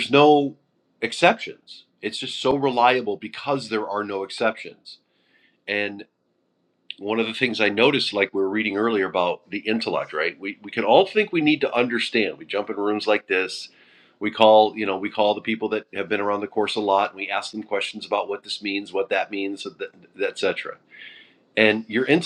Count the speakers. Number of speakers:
one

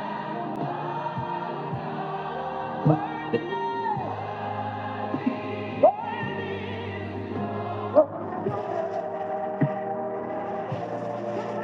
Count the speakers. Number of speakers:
zero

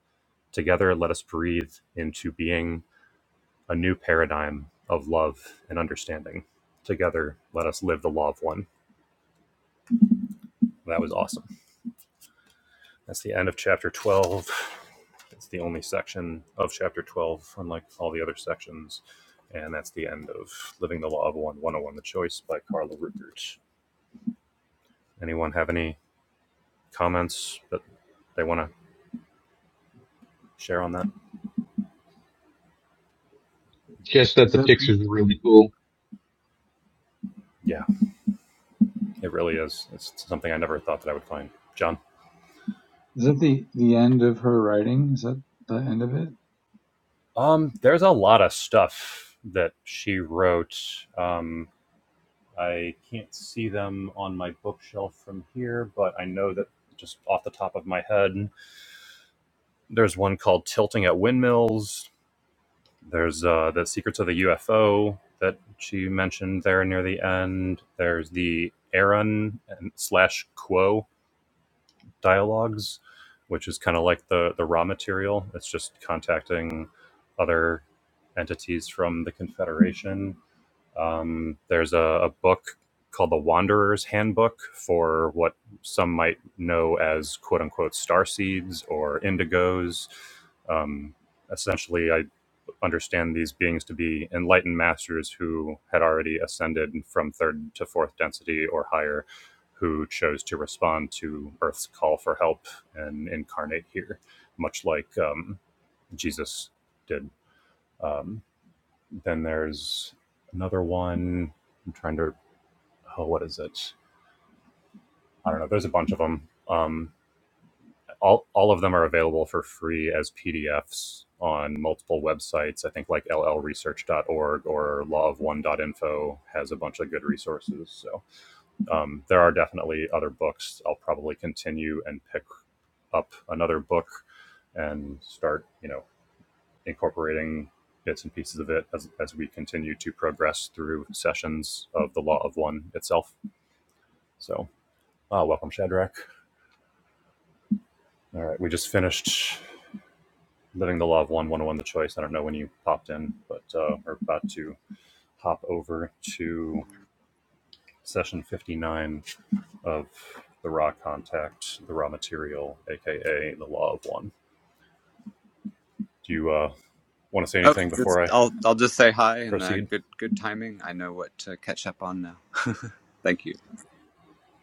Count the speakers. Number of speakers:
four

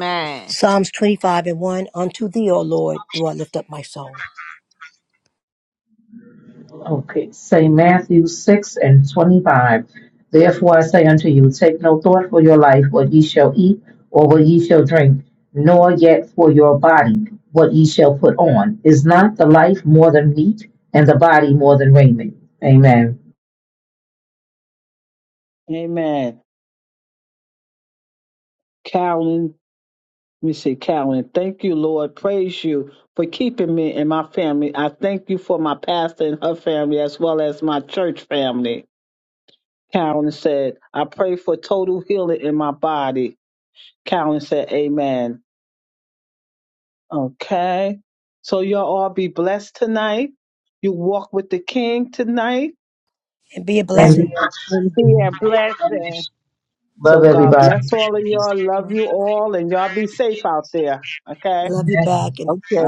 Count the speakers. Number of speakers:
four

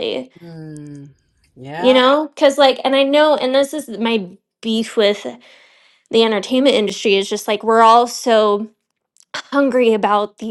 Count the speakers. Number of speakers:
two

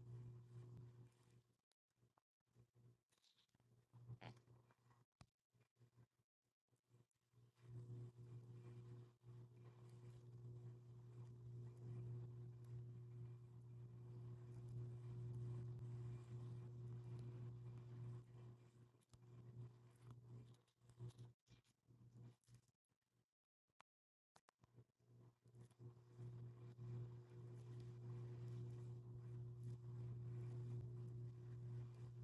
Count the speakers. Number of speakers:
zero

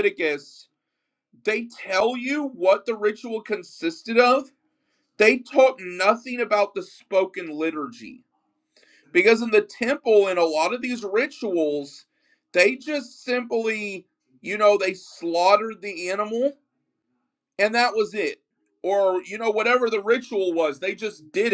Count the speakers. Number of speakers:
one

